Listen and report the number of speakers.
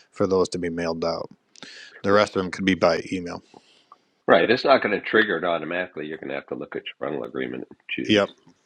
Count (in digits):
2